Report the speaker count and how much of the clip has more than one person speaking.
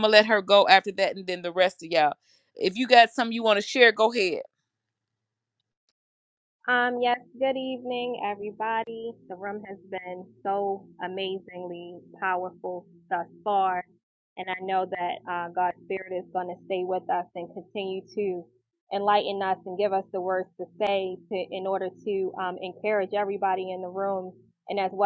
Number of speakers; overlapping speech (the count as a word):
two, no overlap